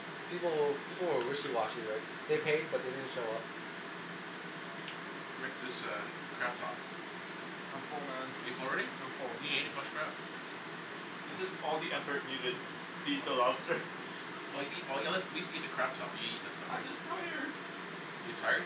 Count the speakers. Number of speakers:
3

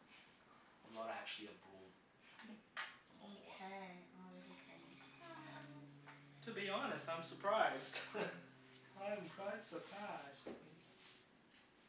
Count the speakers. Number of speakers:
3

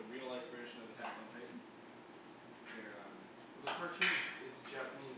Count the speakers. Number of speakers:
2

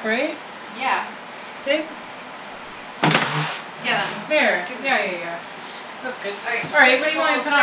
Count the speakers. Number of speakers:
2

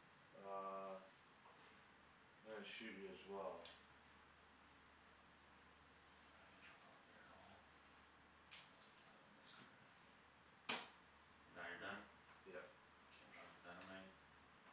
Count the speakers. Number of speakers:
2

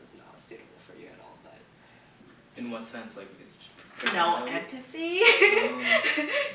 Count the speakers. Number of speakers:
2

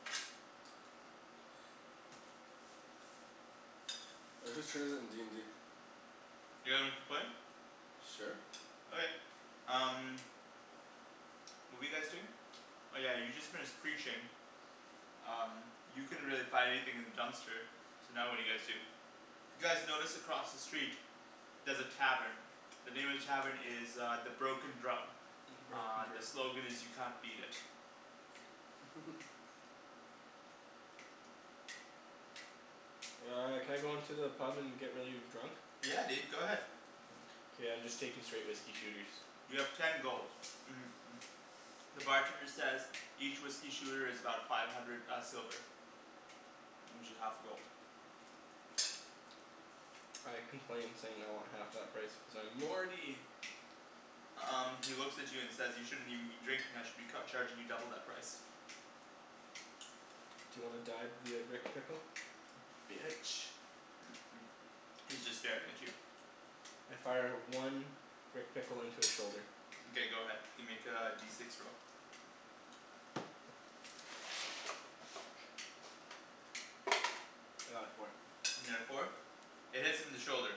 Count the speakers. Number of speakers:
3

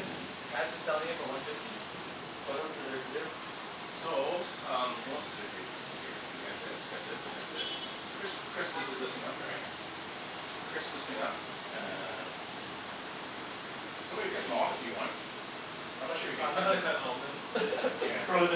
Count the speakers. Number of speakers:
3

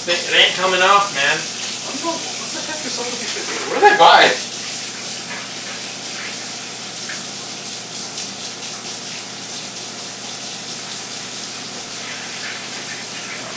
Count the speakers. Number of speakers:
2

